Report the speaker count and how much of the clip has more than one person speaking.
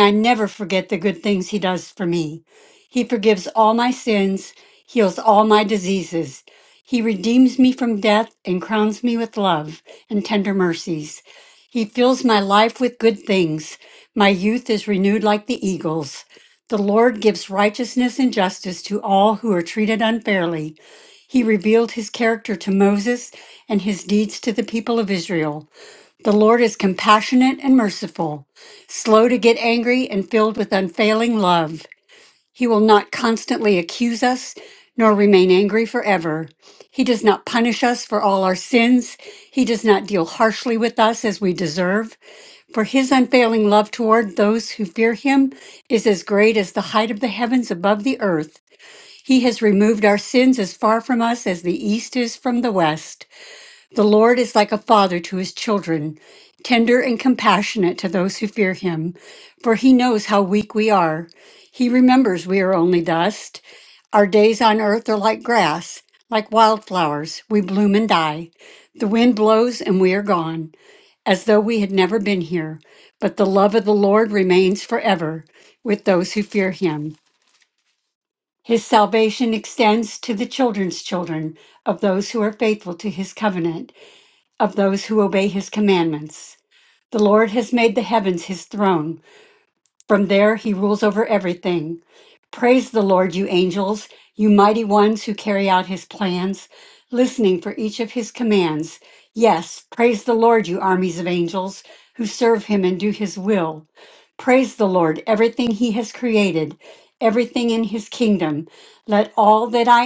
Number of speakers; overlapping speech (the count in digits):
1, no overlap